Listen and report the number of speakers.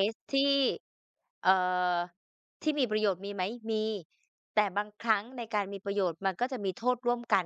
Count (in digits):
1